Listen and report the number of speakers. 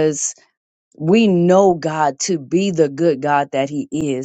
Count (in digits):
1